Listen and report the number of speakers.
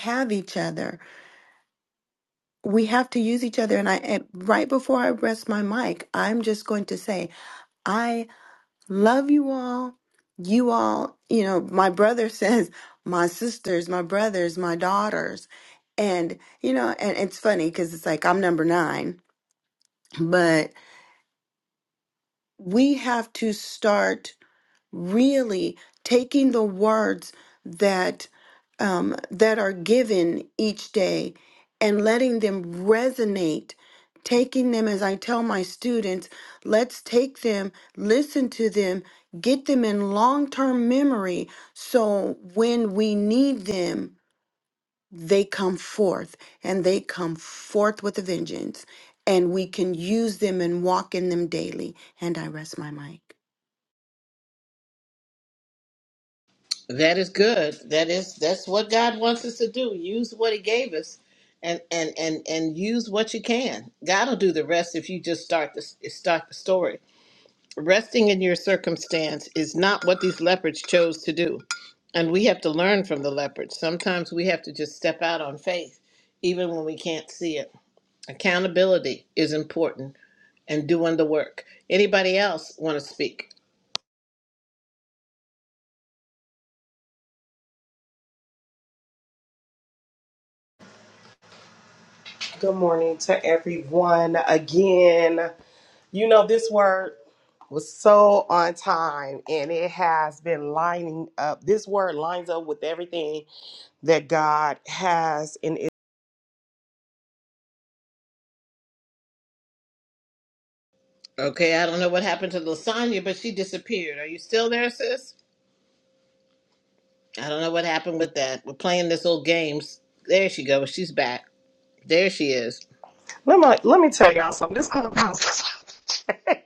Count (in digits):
3